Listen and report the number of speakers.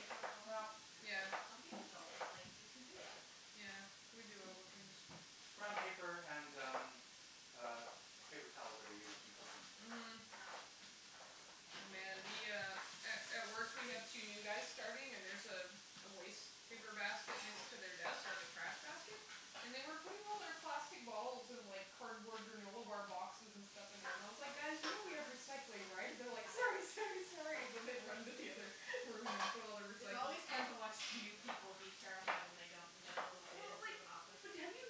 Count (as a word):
three